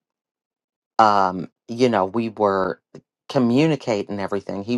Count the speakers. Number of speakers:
1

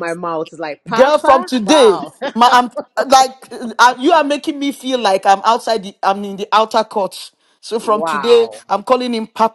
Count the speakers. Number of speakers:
2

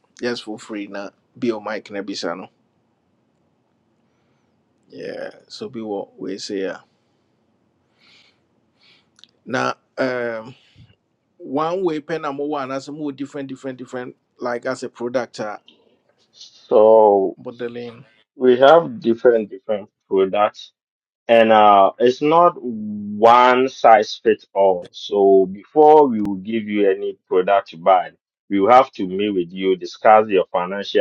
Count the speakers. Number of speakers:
2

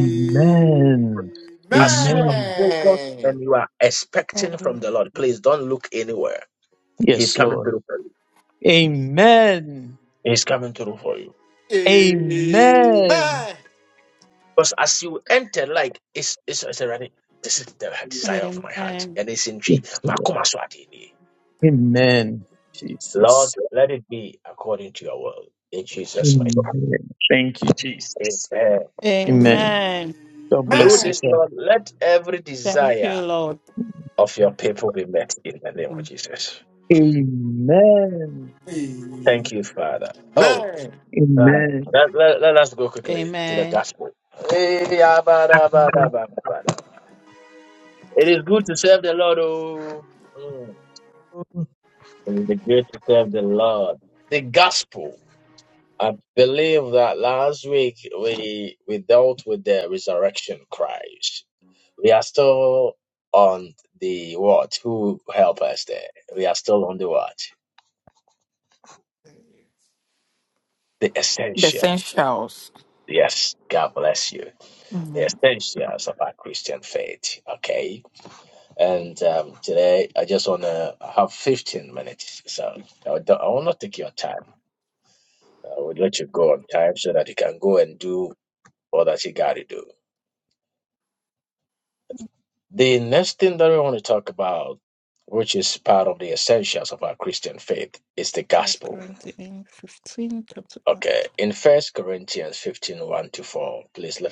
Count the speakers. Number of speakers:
5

